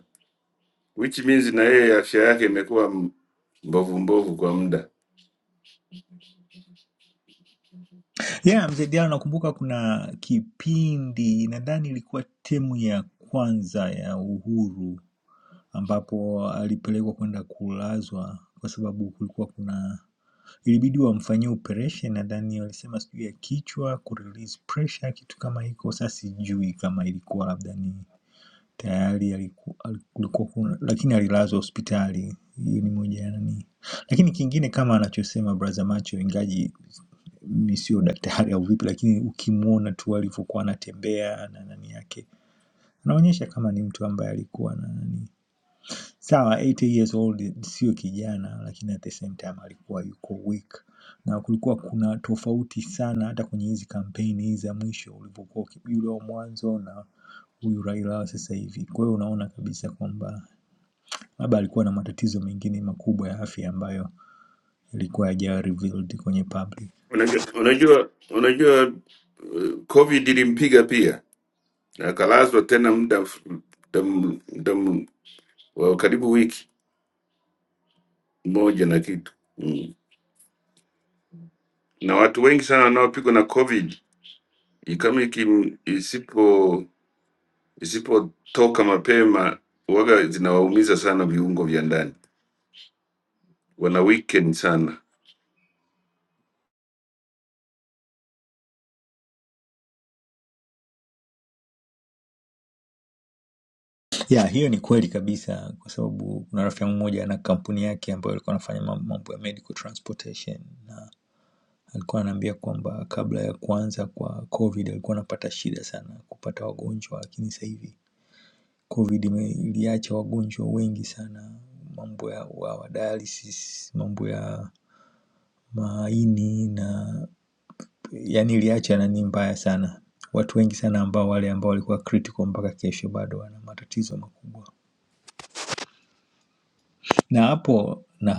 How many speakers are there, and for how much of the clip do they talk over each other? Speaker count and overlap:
two, no overlap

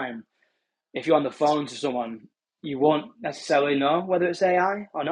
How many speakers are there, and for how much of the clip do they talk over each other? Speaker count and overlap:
one, no overlap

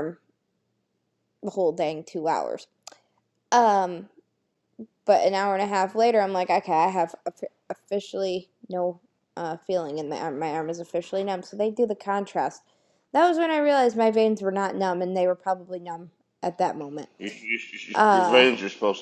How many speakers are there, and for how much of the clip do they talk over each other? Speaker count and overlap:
two, about 3%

